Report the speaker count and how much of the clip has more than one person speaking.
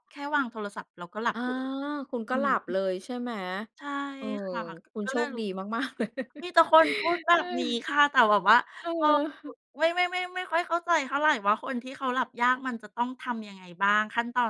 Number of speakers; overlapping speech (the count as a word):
two, about 6%